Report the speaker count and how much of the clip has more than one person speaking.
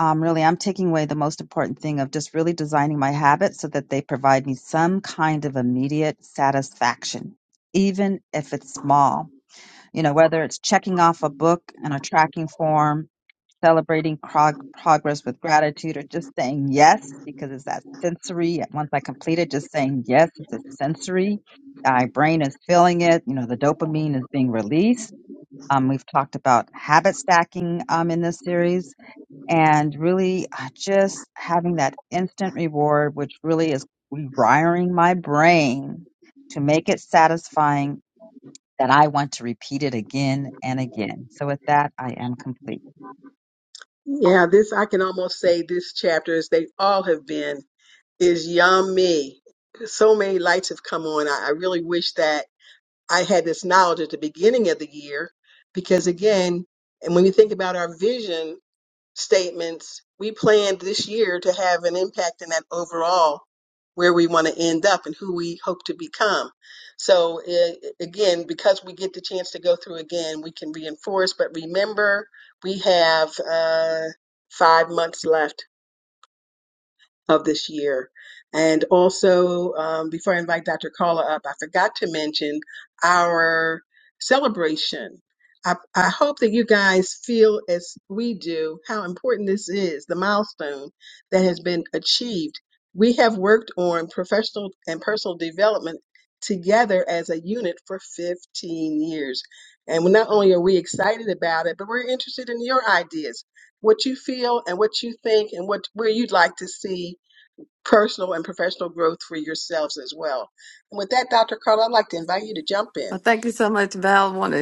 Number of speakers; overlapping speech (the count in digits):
3, under 1%